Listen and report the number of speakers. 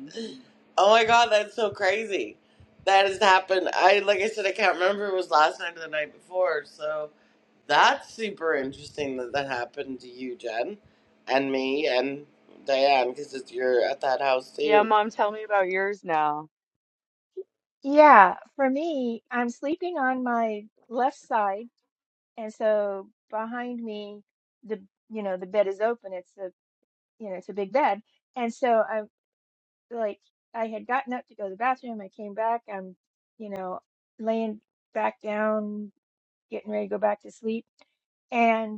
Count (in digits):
3